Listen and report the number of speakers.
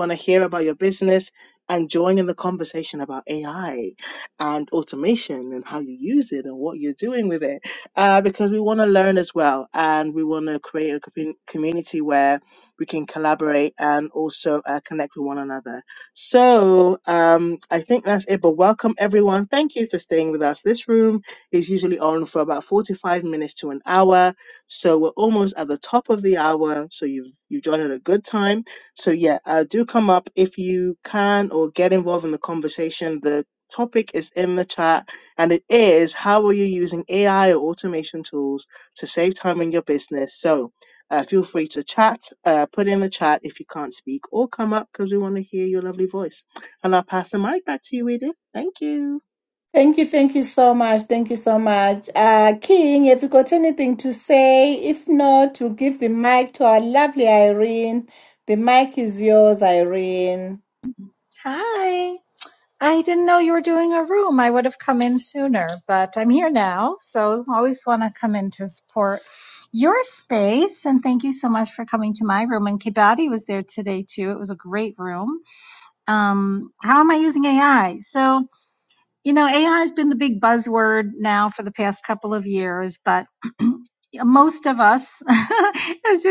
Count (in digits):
3